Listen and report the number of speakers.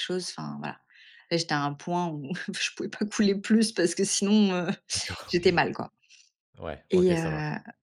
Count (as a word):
two